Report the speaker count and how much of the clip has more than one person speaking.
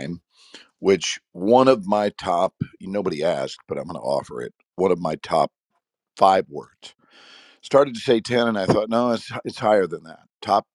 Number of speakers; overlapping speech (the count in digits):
1, no overlap